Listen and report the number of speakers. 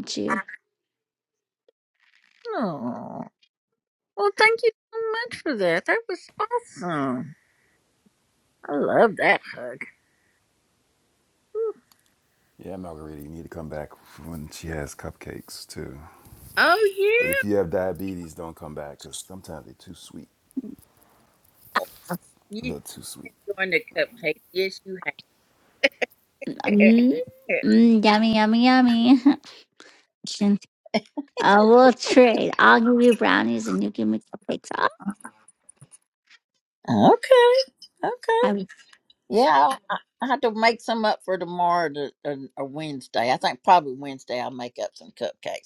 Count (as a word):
three